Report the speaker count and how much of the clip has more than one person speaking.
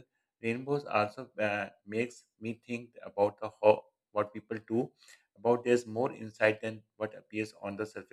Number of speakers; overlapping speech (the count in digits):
1, no overlap